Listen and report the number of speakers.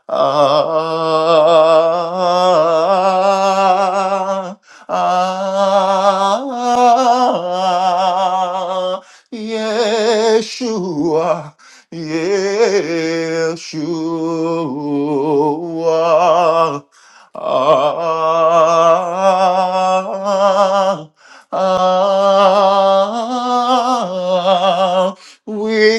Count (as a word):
one